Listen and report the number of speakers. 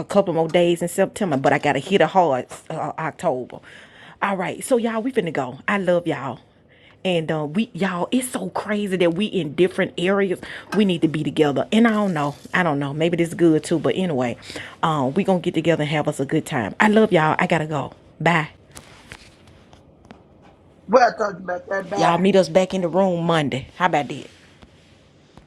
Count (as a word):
two